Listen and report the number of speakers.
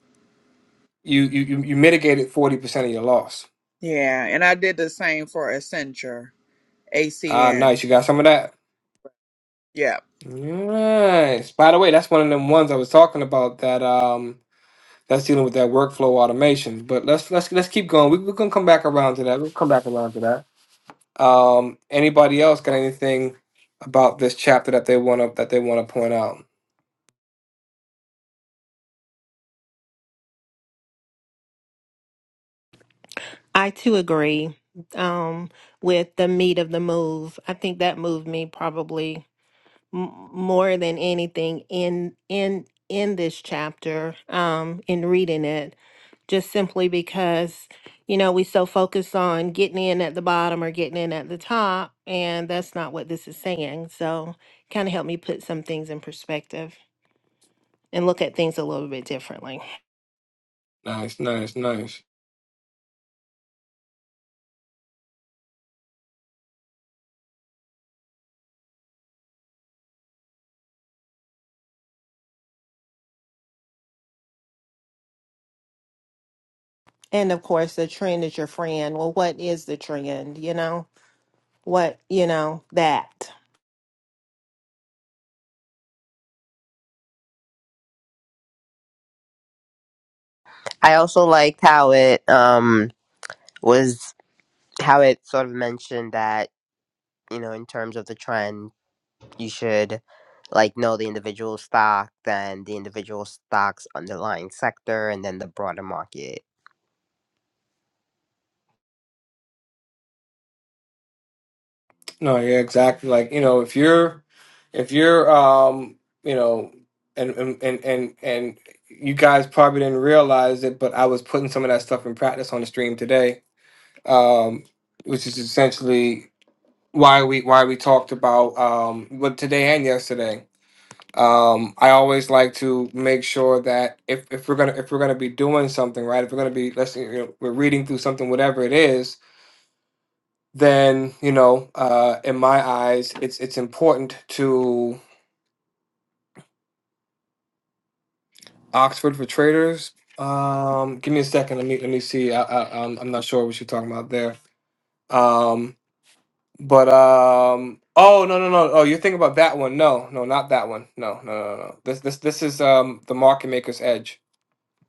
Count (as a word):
four